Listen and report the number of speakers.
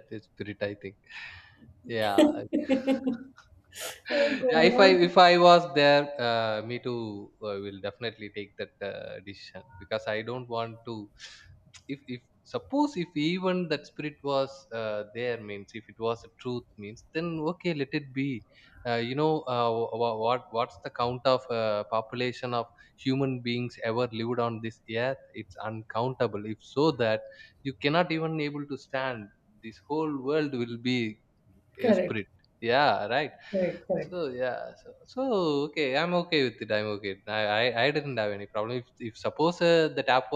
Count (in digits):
2